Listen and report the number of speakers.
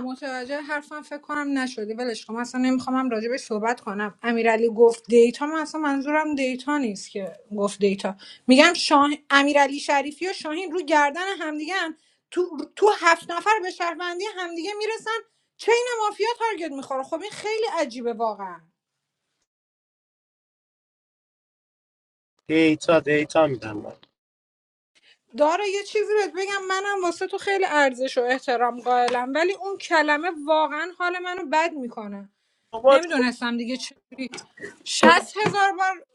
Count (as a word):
two